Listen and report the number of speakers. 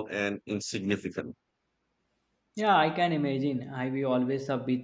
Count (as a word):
two